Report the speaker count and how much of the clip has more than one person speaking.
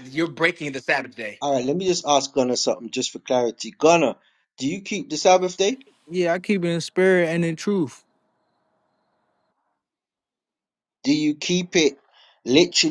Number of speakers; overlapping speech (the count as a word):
three, no overlap